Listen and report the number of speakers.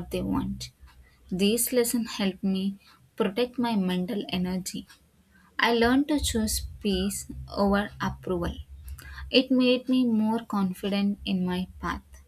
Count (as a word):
one